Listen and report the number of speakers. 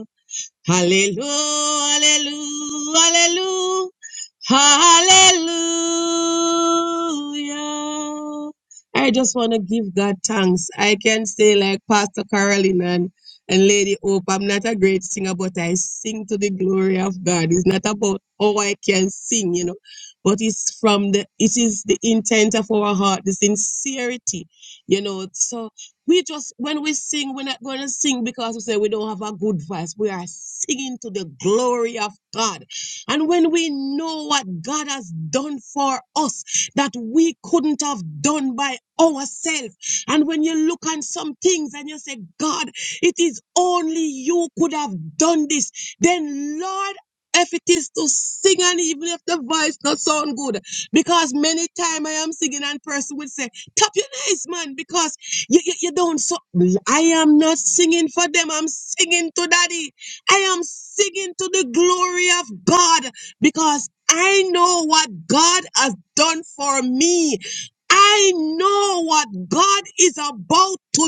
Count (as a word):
one